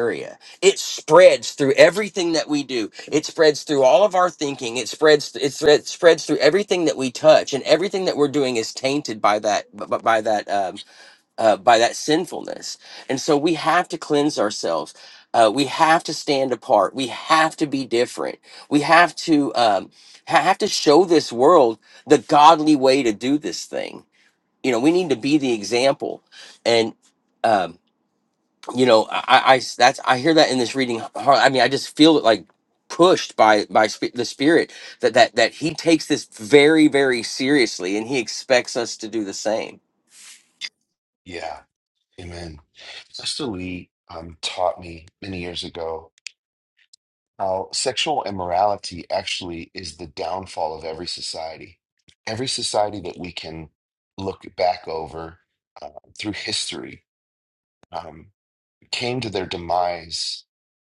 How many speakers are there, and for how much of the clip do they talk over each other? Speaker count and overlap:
2, no overlap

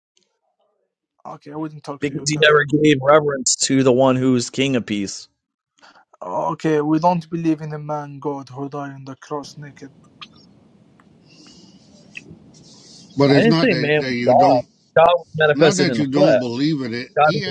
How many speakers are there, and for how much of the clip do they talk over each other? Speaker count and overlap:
3, about 18%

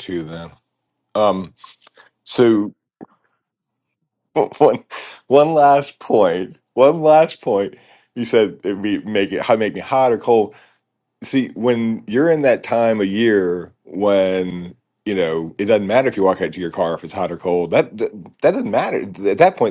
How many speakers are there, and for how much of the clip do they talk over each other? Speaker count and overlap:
1, no overlap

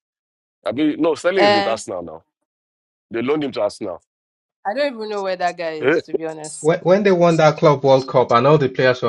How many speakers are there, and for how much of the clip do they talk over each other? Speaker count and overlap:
3, about 7%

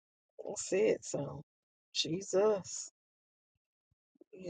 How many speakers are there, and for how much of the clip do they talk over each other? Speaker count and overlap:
1, no overlap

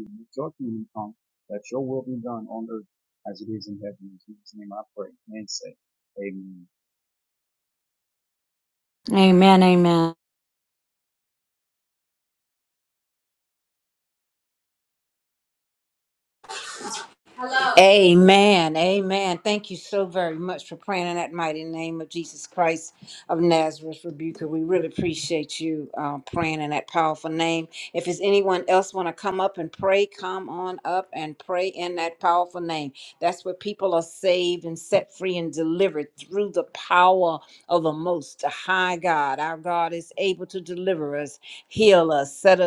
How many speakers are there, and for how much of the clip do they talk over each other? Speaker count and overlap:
3, no overlap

